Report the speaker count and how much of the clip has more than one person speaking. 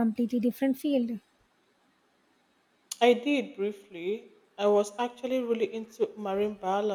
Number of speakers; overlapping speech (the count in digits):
2, no overlap